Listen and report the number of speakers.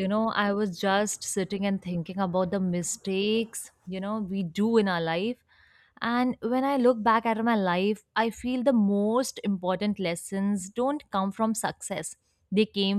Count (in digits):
1